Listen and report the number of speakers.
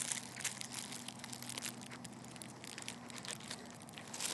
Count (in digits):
0